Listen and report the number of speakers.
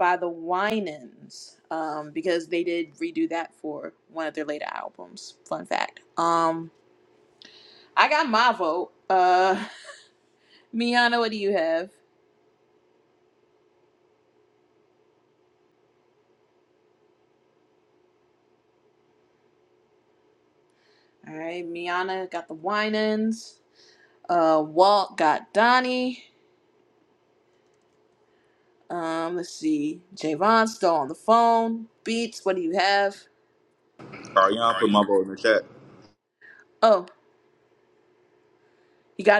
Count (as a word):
two